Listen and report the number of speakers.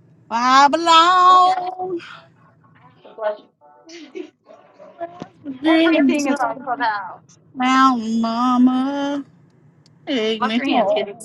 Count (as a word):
two